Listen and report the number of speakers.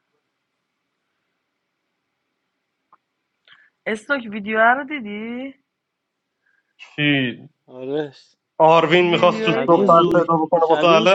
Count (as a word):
three